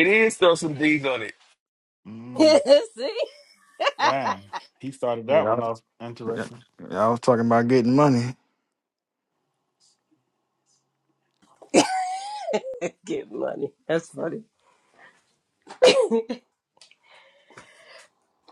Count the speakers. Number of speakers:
4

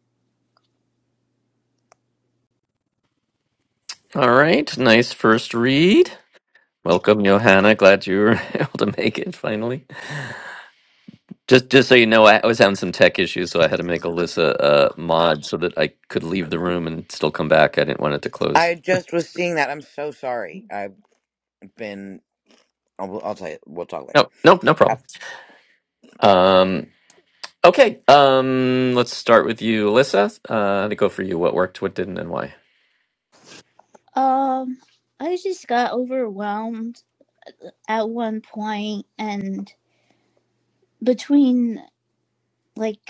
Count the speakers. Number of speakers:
3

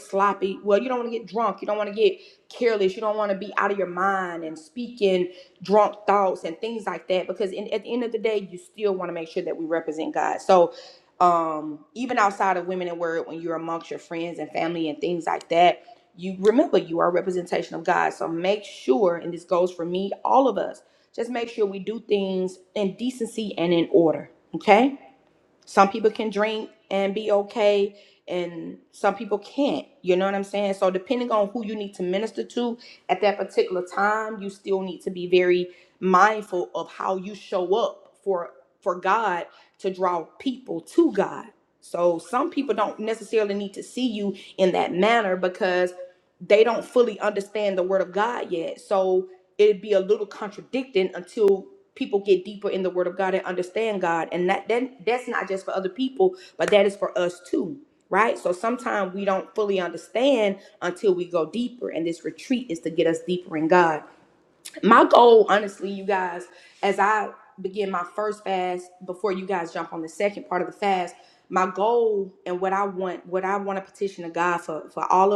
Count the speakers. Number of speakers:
1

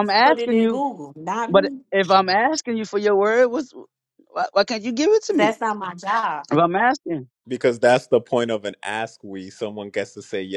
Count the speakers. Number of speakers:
3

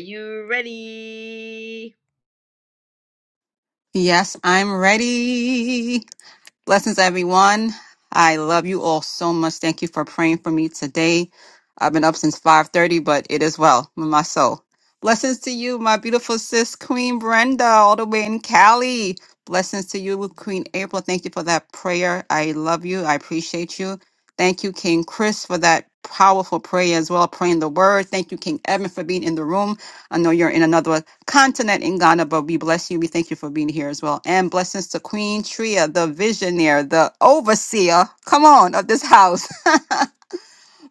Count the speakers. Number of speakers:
2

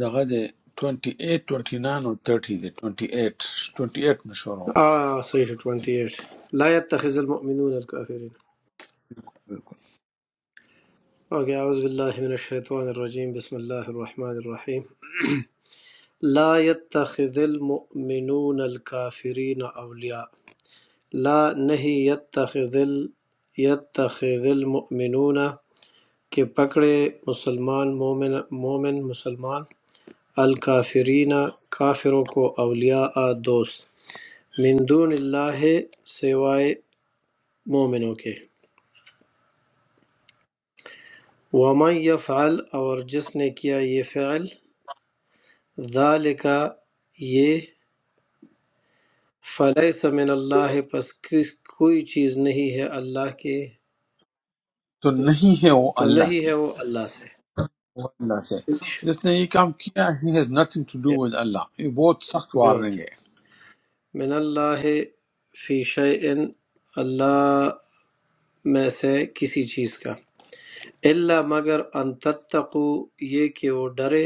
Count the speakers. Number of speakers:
2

